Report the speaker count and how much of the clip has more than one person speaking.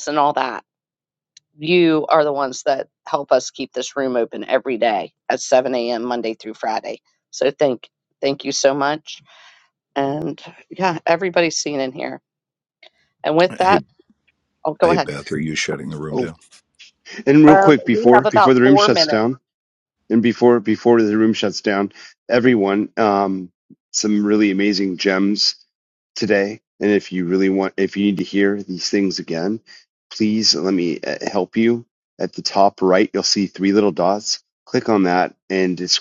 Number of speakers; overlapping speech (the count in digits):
3, about 7%